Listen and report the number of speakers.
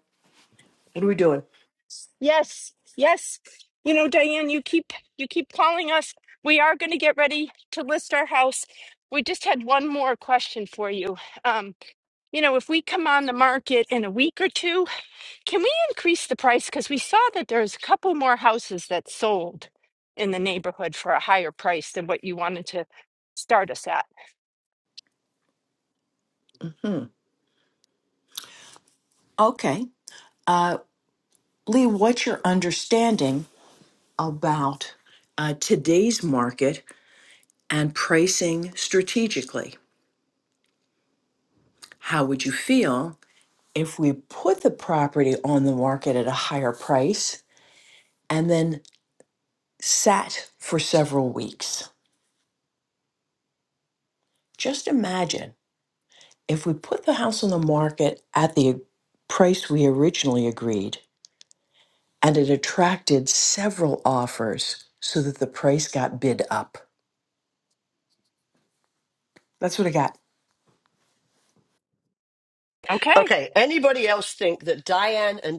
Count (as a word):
three